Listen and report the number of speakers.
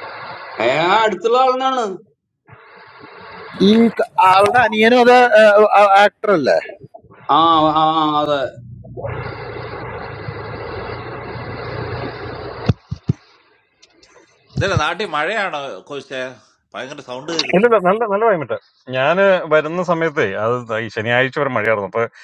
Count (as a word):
four